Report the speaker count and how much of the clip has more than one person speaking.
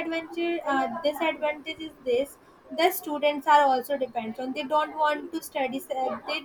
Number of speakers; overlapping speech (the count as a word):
one, no overlap